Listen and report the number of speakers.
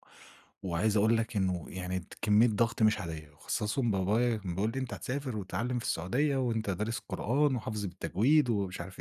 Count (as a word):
one